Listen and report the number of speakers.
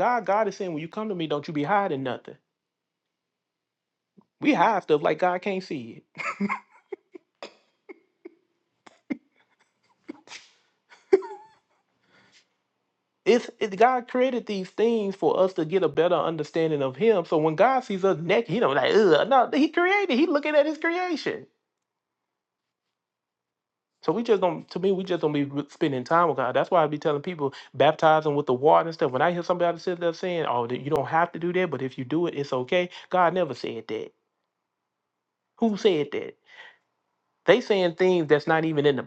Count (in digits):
1